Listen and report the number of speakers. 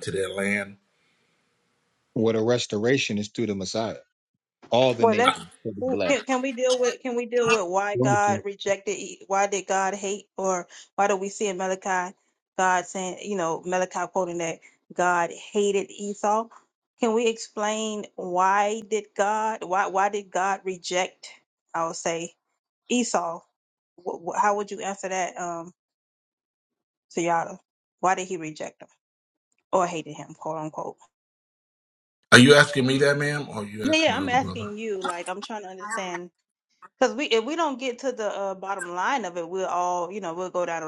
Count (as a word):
three